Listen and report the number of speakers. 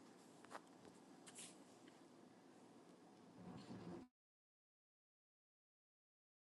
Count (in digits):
0